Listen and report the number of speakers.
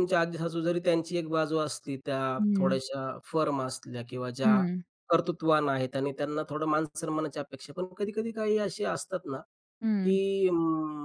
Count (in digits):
2